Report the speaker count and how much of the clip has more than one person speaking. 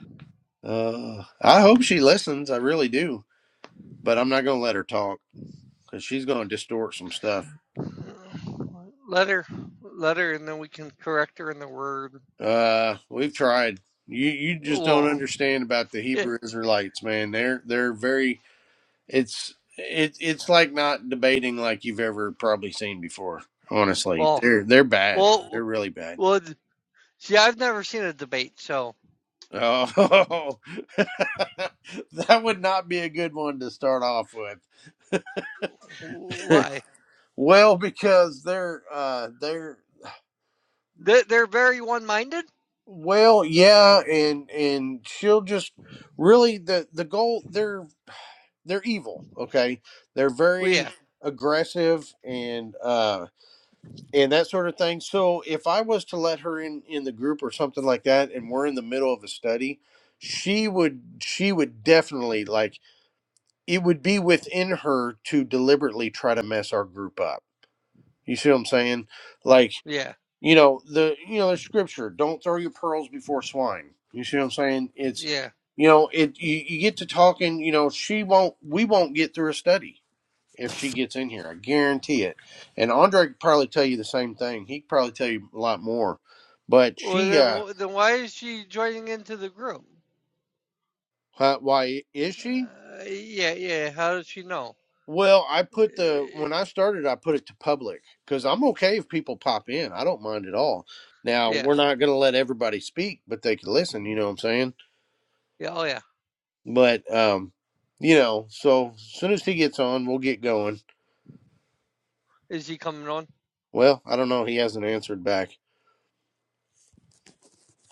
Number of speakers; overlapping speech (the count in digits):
2, about 3%